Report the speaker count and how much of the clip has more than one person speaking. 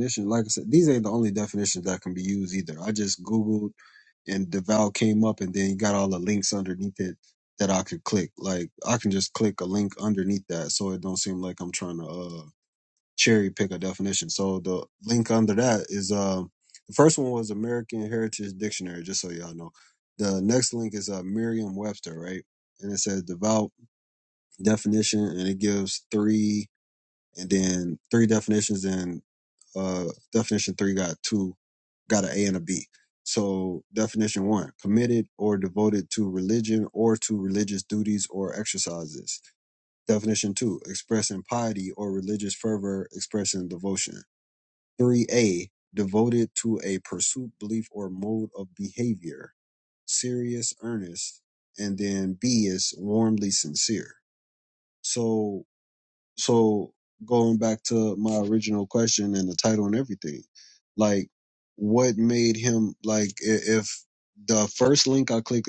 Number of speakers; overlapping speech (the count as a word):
one, no overlap